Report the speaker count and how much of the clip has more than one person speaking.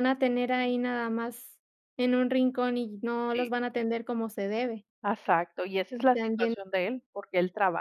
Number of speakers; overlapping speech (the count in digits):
2, about 9%